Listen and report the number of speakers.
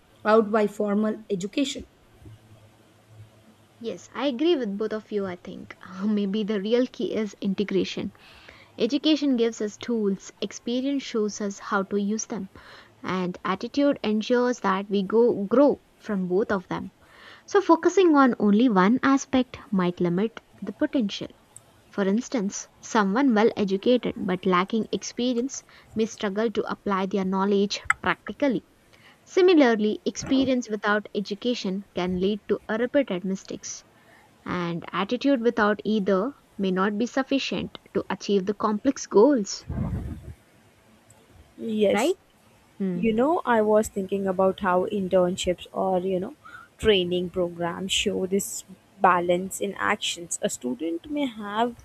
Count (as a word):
three